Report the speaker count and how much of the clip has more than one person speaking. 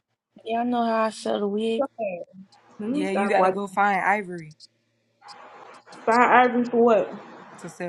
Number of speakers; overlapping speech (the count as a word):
three, about 8%